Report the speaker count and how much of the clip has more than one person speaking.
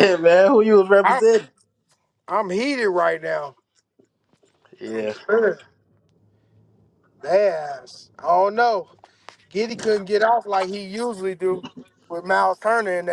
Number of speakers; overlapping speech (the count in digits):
2, about 4%